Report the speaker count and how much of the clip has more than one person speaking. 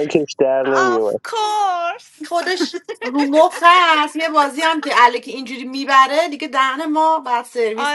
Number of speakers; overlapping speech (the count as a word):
three, about 10%